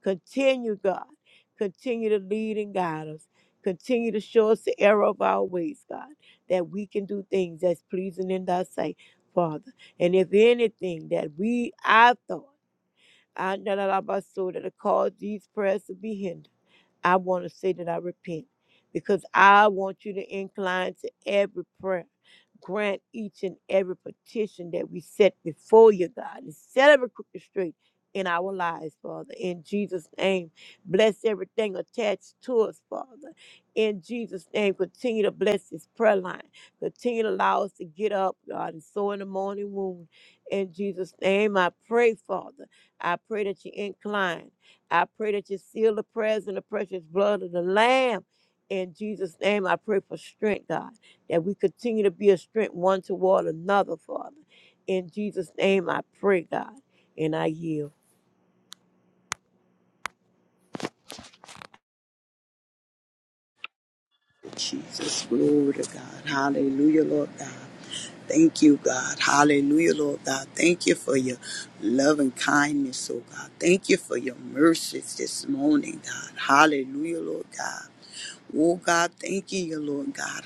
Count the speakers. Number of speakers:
2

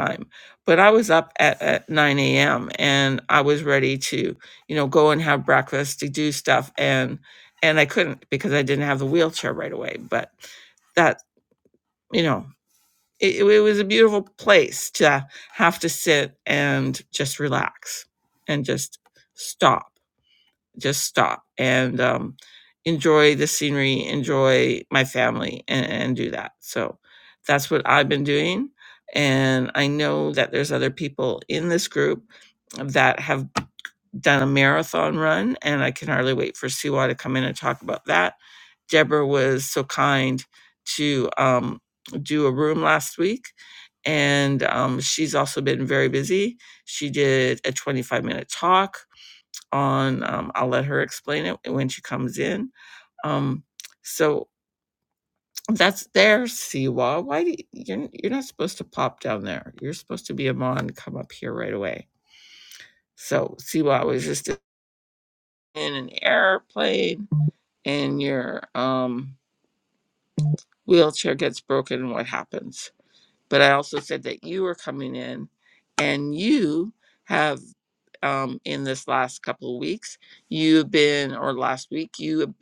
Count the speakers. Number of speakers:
1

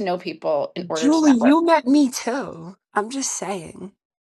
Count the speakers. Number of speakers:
2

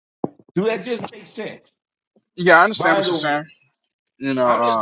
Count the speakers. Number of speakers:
2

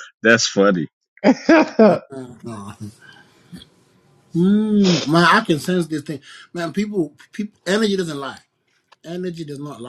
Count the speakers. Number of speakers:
2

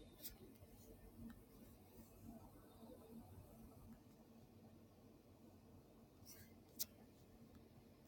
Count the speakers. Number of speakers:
0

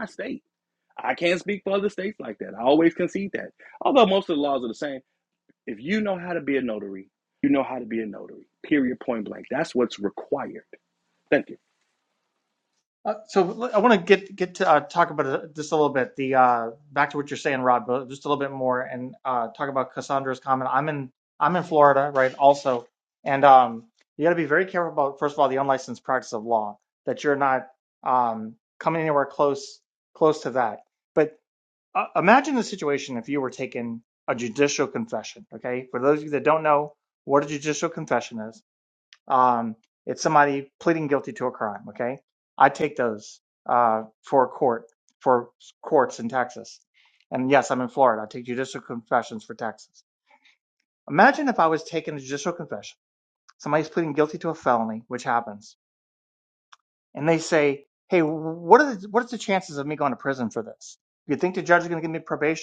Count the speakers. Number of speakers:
2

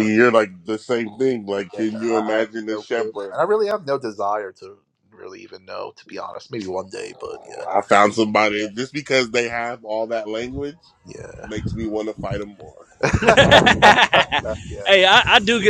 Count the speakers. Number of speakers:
3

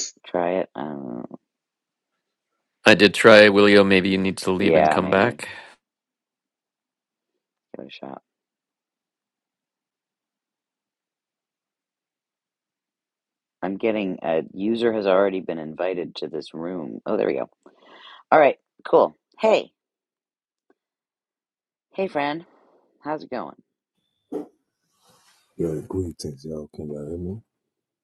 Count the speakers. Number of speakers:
3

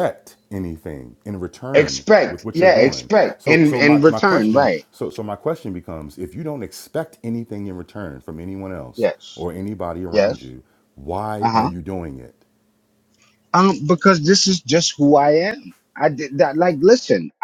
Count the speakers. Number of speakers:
2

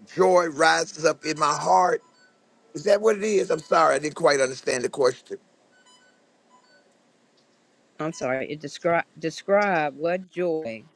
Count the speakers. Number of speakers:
2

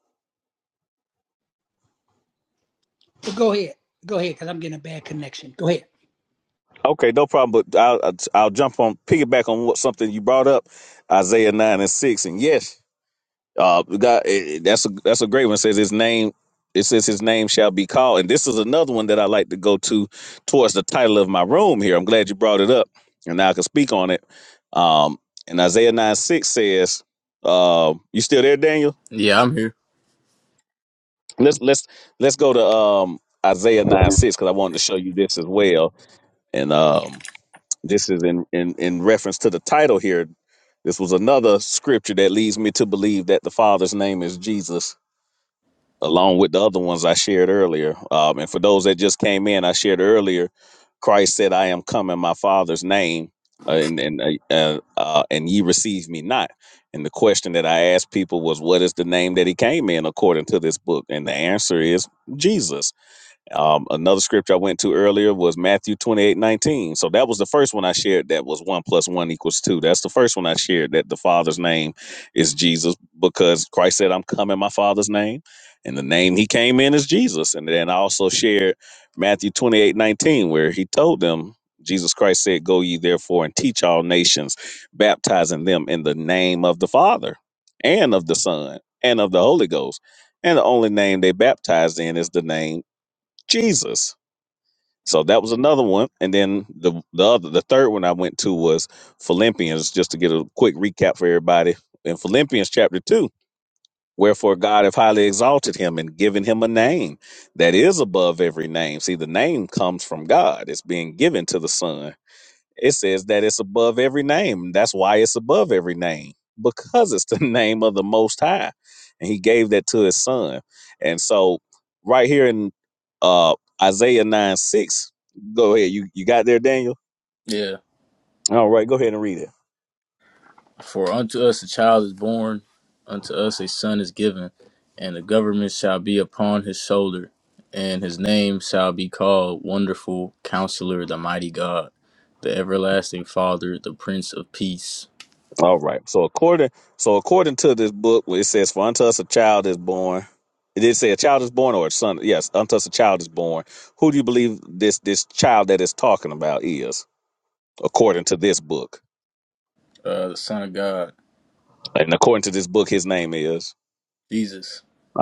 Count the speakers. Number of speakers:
3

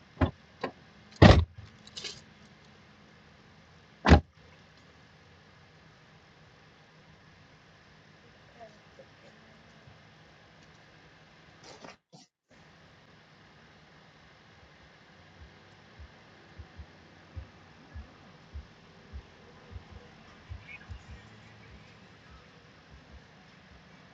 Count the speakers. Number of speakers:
0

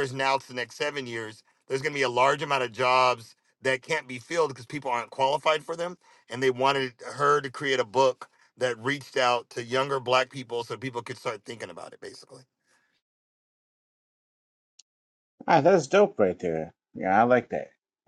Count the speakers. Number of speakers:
2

